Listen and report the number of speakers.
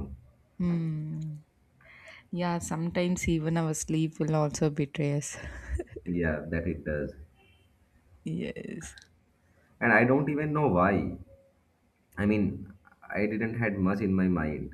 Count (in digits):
2